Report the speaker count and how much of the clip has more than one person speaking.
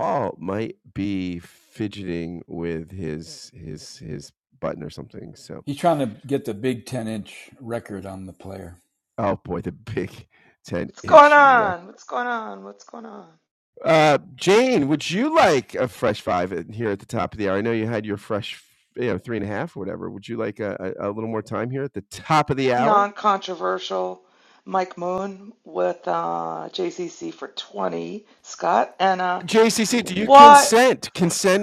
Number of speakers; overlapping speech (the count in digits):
3, about 5%